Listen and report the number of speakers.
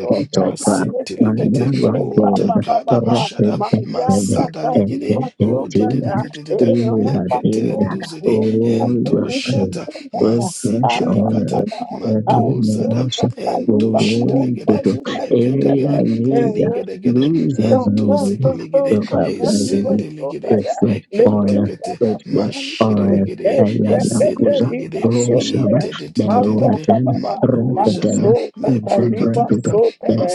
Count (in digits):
3